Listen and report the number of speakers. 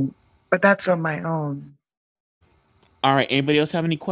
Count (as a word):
two